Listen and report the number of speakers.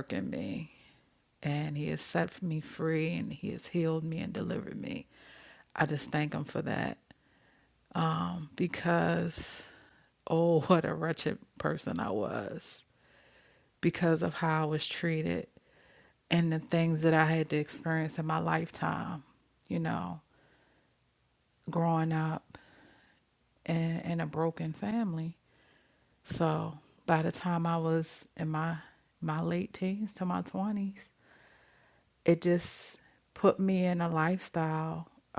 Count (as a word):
one